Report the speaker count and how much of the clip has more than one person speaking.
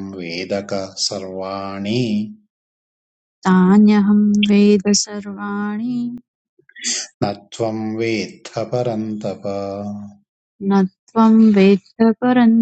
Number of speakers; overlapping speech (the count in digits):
2, no overlap